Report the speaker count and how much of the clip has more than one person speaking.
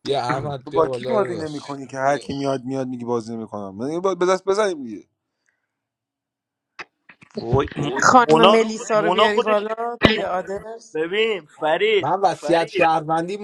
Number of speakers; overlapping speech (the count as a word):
four, about 19%